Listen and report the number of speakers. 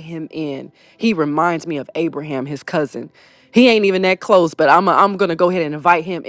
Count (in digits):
1